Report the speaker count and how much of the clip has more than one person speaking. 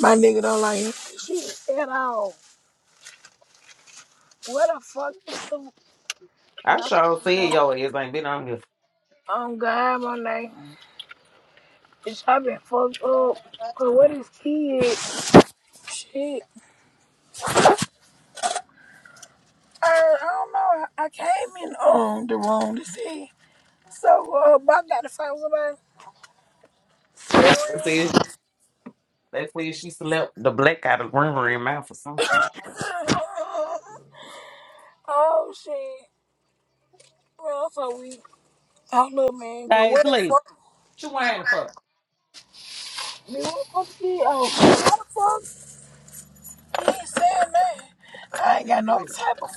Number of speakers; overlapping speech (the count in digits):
2, about 2%